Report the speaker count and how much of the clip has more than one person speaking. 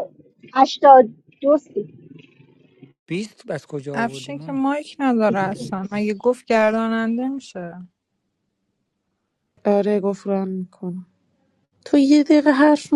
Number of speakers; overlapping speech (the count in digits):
4, about 8%